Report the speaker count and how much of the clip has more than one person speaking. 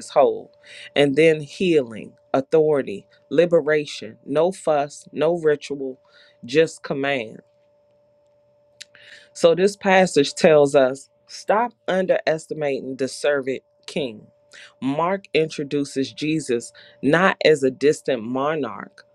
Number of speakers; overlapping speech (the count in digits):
1, no overlap